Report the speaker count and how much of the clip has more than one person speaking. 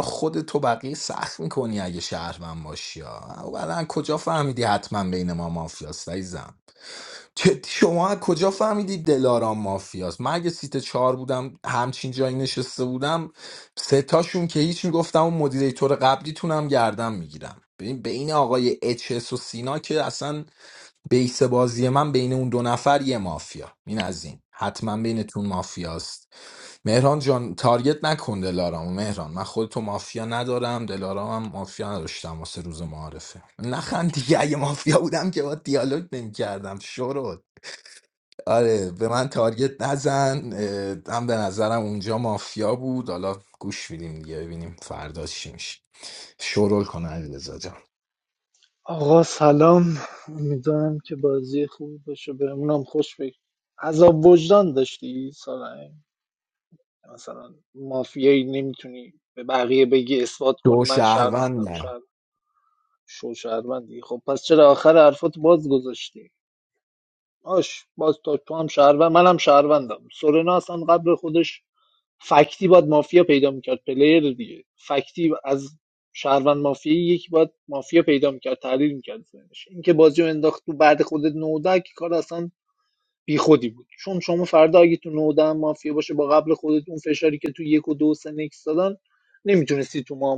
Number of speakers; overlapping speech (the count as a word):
two, about 1%